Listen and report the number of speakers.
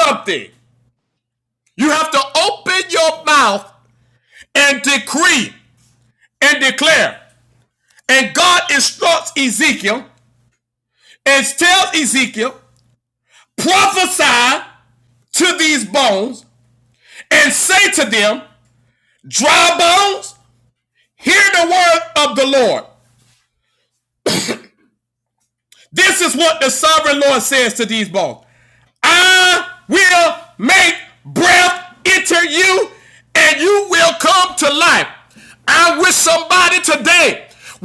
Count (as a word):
one